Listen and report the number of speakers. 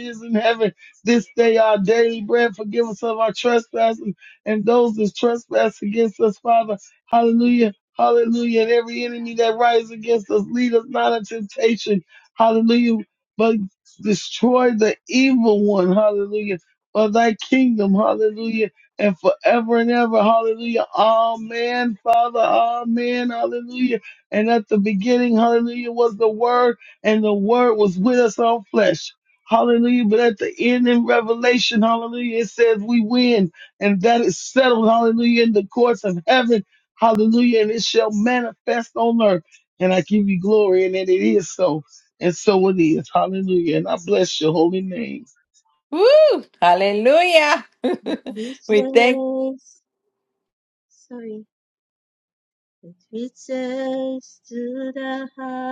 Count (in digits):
3